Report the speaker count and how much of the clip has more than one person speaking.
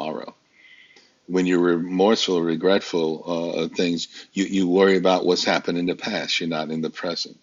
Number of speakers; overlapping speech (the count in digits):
1, no overlap